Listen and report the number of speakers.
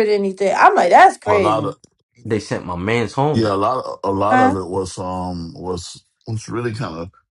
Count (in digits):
3